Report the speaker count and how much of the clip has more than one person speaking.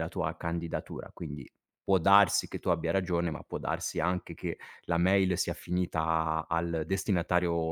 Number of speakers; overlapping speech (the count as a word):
one, no overlap